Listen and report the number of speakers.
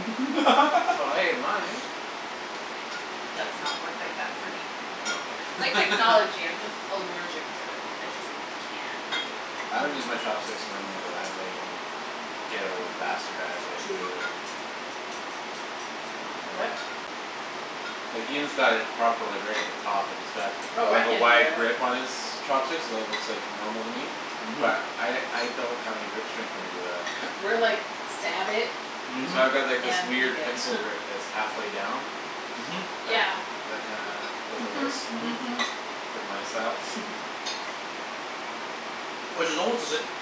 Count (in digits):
4